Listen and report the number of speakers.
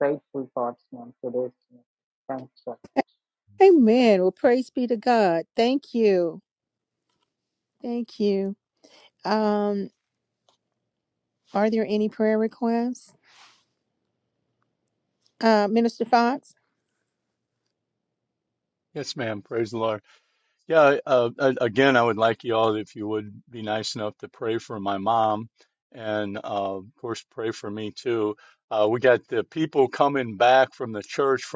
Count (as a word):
three